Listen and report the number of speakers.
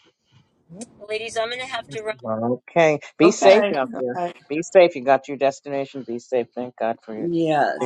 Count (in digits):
3